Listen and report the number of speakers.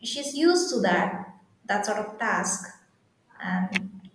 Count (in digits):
1